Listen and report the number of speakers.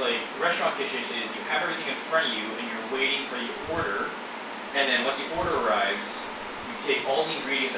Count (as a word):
one